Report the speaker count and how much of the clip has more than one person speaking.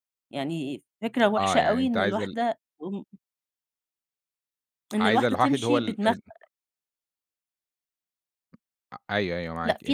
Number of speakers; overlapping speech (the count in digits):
2, about 26%